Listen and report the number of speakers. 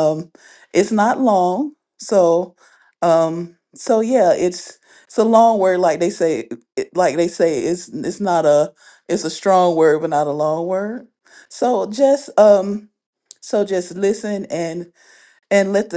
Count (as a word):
one